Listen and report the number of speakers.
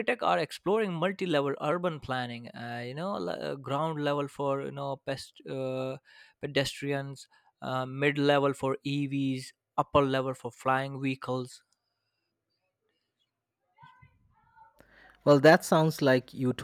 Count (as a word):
two